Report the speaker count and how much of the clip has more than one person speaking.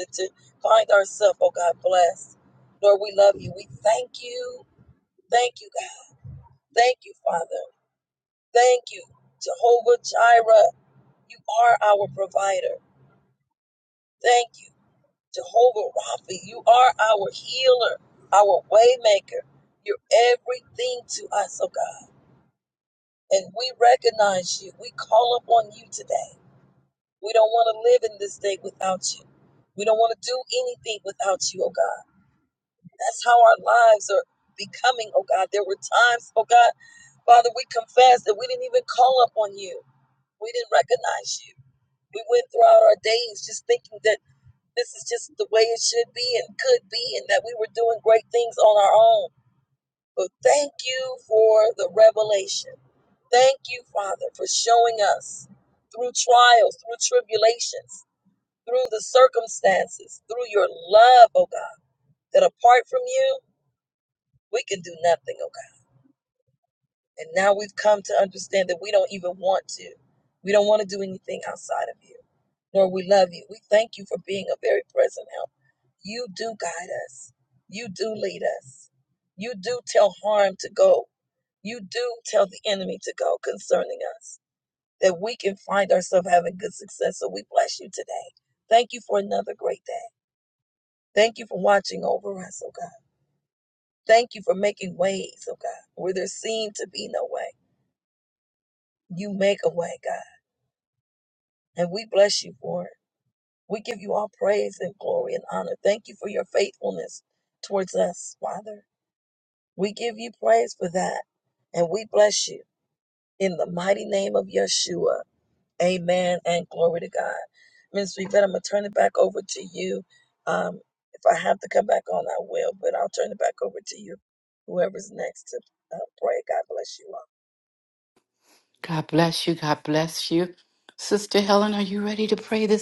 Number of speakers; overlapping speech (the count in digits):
2, no overlap